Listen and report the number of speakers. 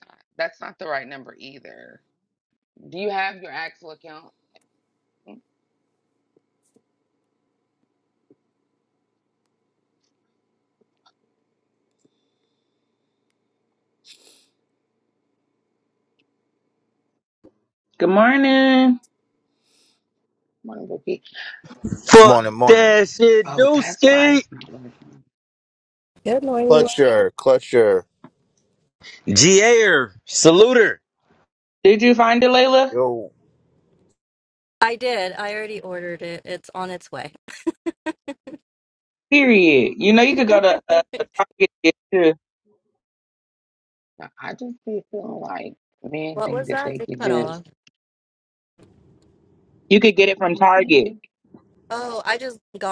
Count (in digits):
5